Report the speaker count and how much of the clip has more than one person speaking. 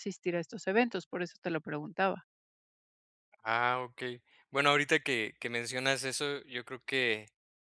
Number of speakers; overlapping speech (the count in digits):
2, no overlap